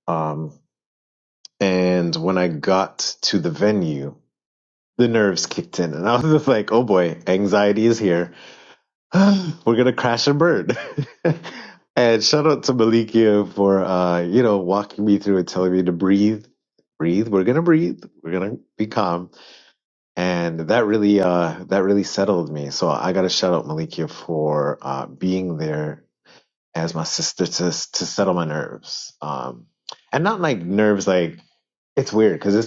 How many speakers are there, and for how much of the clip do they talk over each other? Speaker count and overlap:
1, no overlap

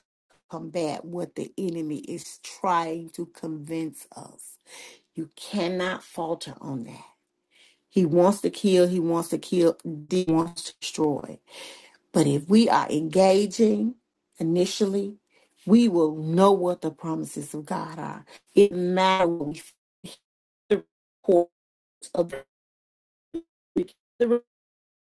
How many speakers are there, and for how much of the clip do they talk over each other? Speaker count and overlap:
1, no overlap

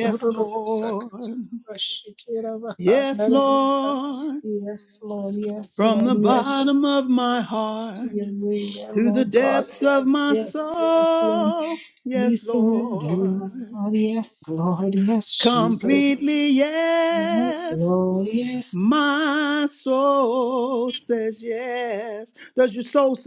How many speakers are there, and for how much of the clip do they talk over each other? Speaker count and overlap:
2, about 37%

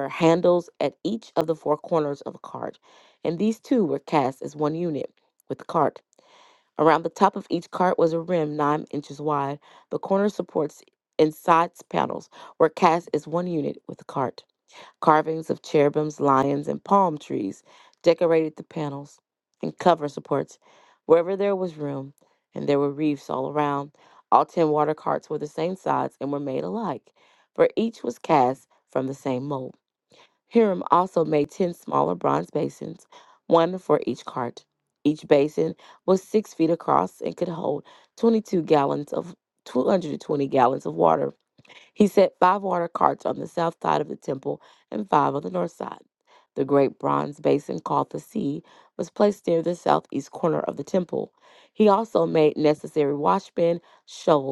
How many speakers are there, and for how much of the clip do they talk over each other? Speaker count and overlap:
1, no overlap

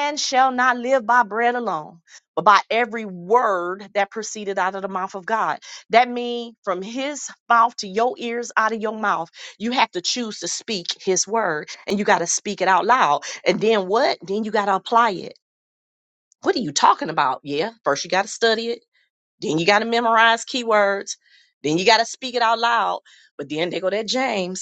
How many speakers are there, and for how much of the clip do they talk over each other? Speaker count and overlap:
1, no overlap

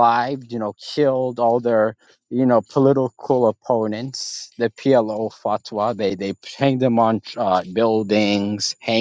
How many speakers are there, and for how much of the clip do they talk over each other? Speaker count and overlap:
1, no overlap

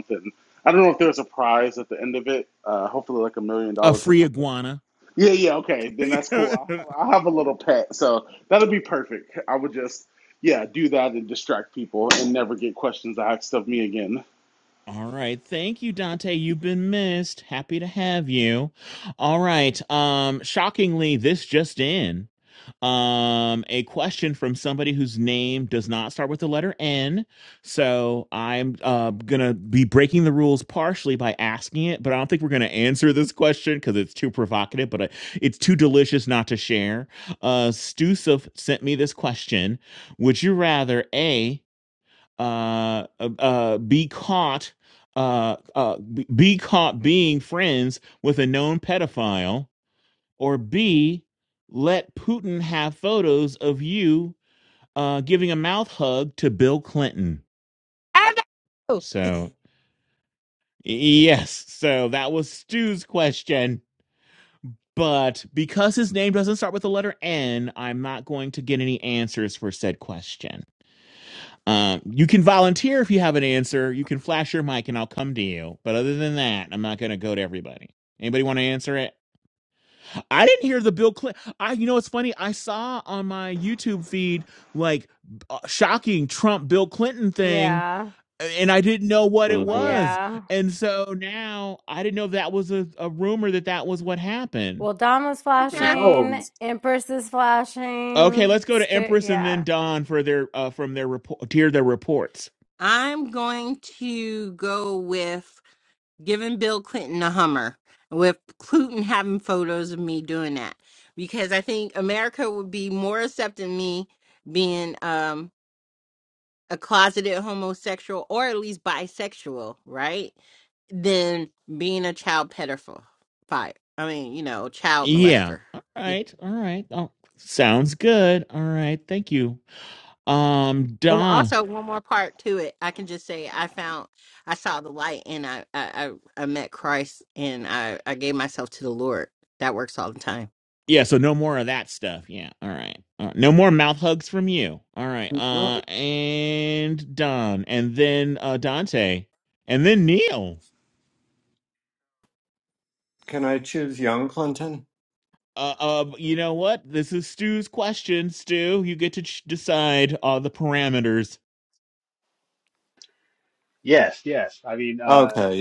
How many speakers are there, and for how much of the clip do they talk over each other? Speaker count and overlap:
6, about 3%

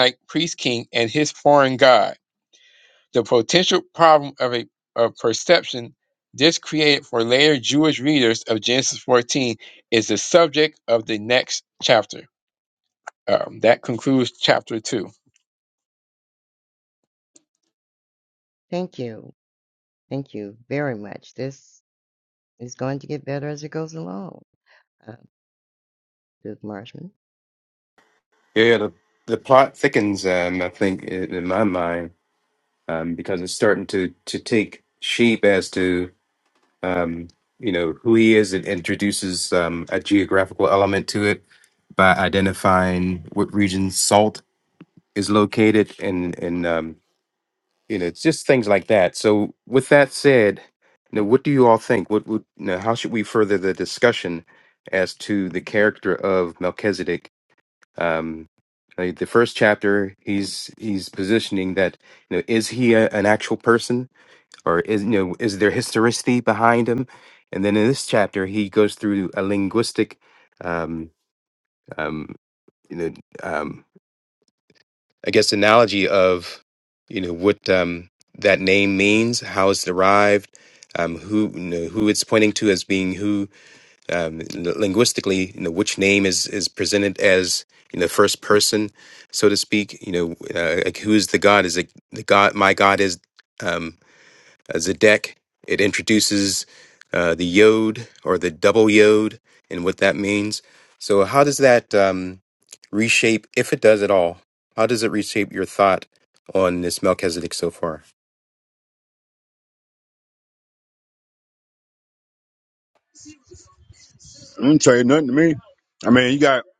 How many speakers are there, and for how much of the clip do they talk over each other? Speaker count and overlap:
4, no overlap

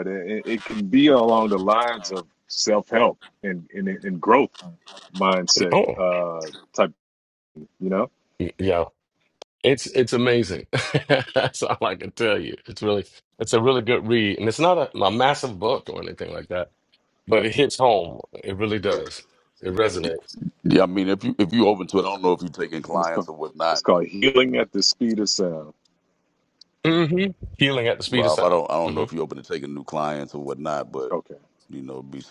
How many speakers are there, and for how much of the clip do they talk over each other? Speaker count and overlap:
3, about 6%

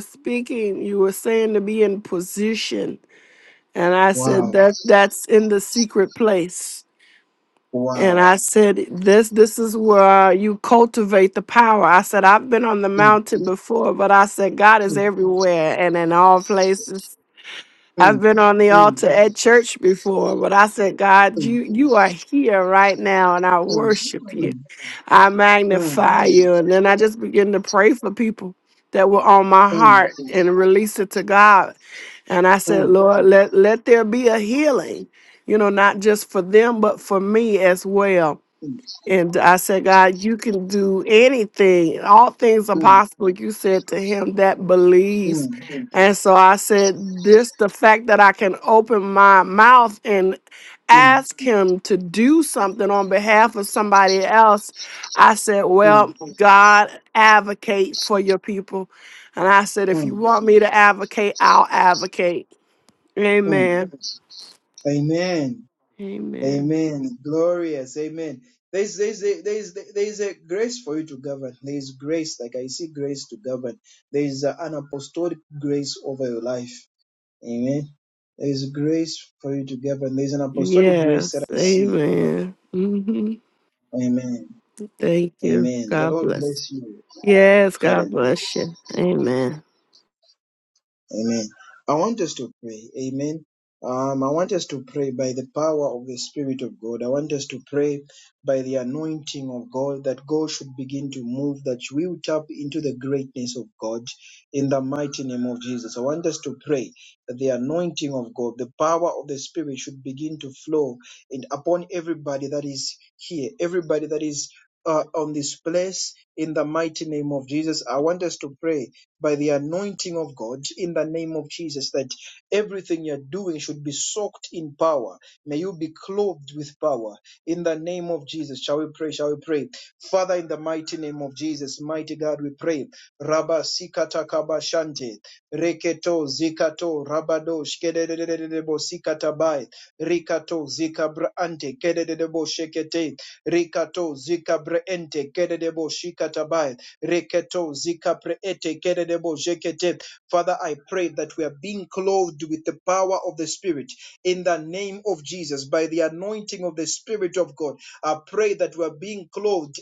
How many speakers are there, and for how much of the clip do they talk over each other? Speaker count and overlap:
2, about 5%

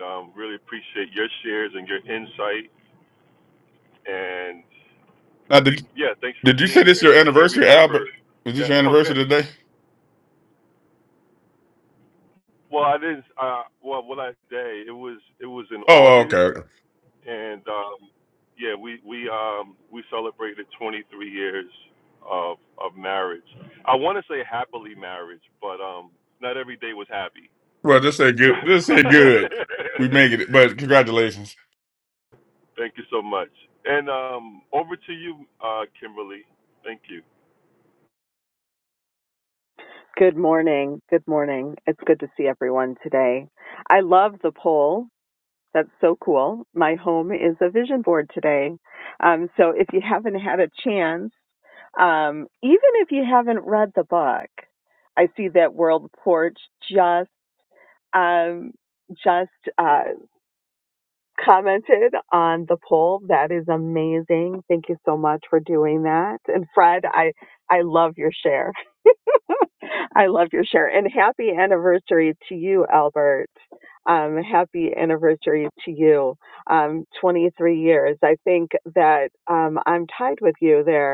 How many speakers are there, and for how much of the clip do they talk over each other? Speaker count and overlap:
3, about 4%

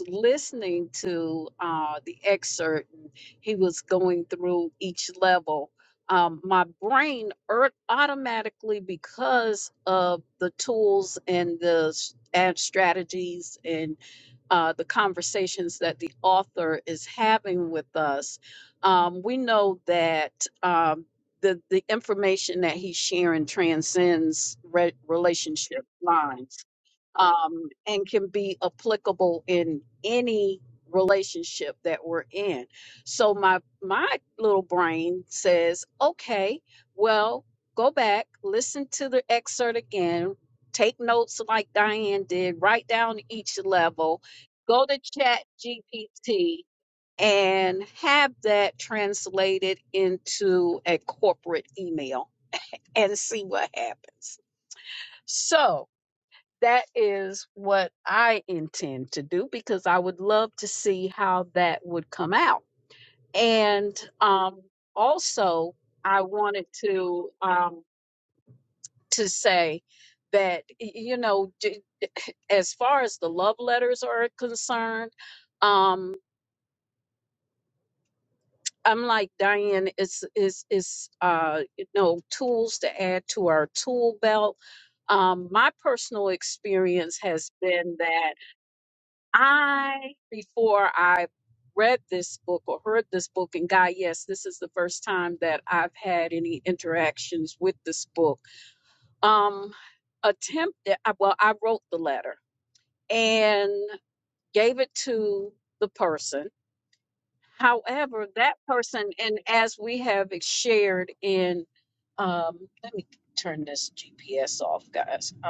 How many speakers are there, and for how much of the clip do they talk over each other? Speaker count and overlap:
1, no overlap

